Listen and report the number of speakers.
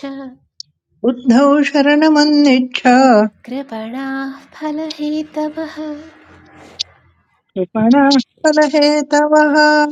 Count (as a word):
two